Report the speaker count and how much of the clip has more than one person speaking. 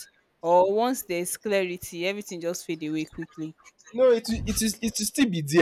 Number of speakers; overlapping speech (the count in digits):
2, no overlap